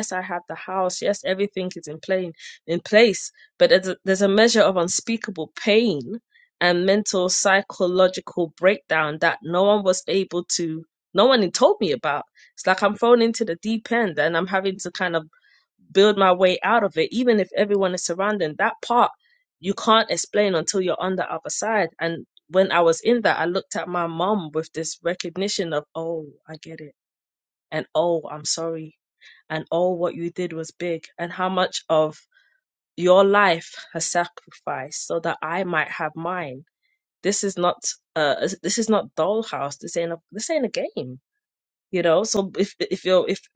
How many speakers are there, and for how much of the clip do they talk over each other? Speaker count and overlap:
1, no overlap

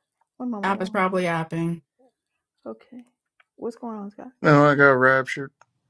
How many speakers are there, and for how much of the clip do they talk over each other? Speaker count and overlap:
3, about 7%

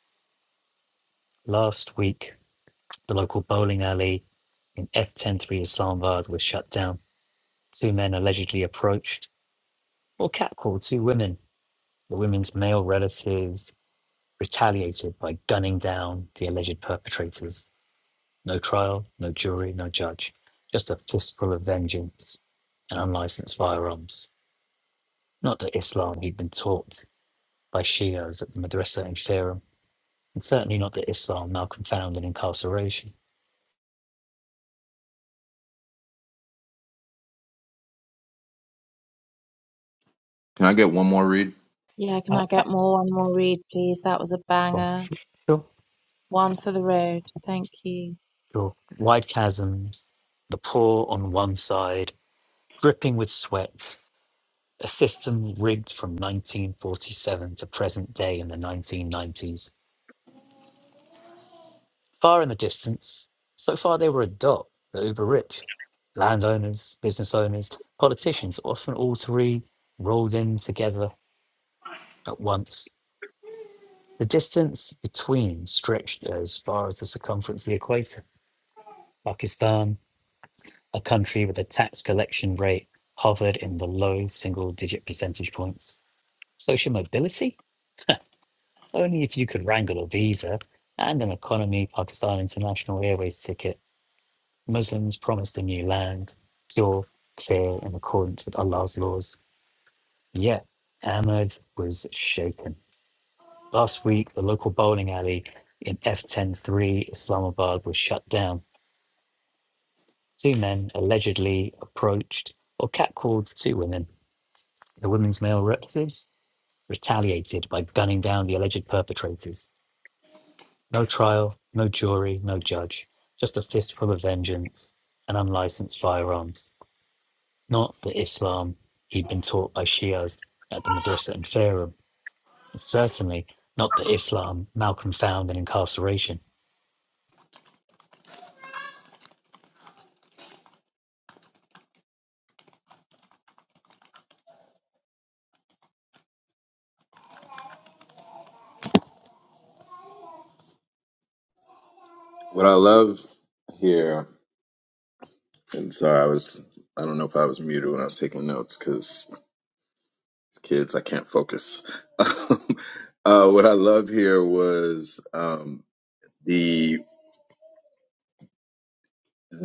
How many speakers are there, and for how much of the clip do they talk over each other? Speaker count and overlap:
3, under 1%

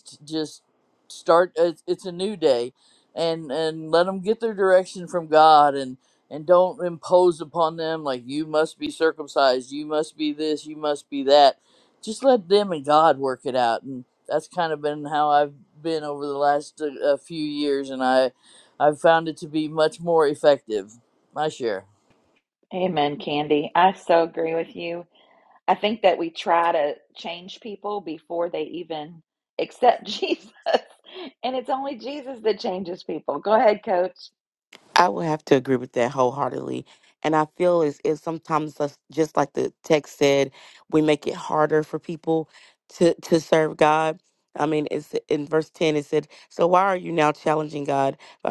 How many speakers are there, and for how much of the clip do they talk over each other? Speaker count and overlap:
3, no overlap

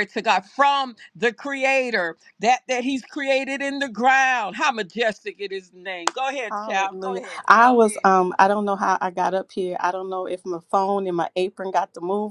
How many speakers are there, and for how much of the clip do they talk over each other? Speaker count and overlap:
2, about 13%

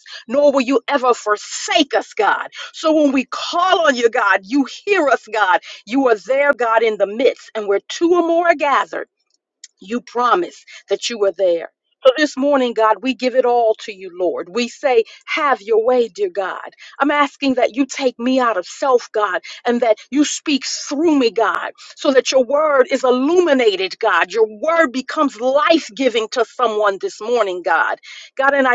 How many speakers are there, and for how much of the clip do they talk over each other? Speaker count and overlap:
1, no overlap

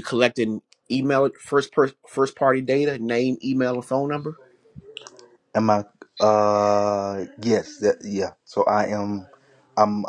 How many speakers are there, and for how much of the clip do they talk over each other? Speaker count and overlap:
2, no overlap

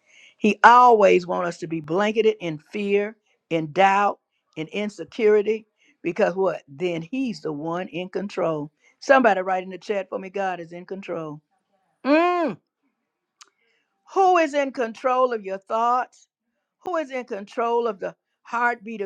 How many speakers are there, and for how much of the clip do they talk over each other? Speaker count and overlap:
1, no overlap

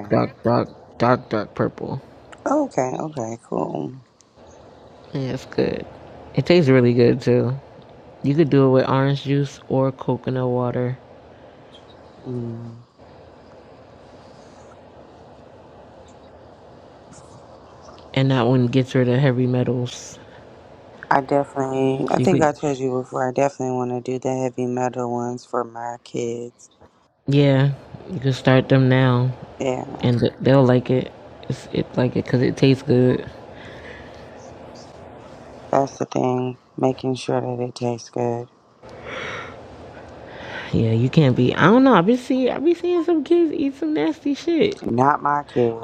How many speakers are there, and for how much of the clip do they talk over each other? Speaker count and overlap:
2, about 2%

